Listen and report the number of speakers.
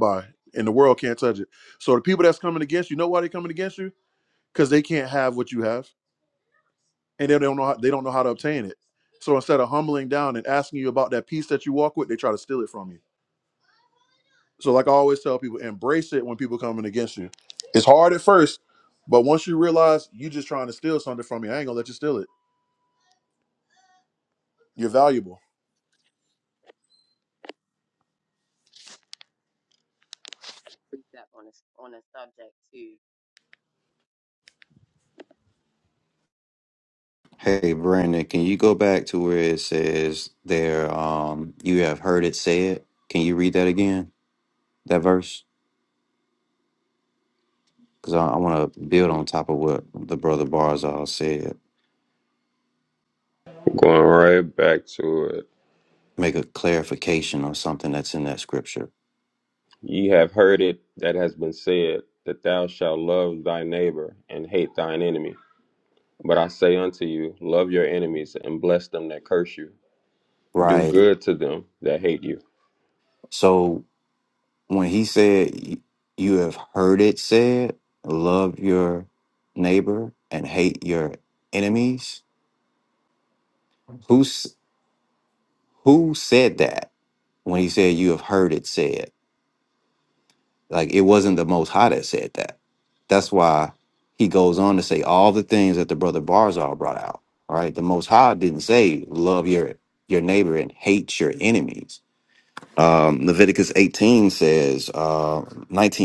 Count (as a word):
four